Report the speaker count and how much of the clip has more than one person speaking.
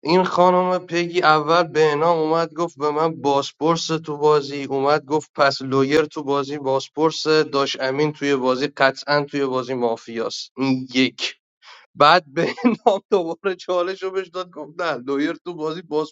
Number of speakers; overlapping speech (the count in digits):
1, no overlap